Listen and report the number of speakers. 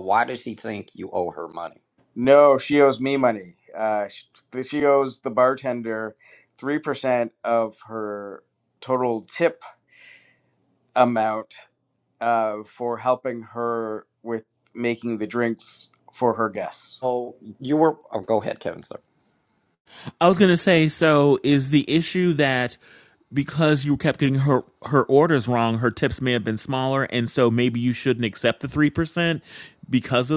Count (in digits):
3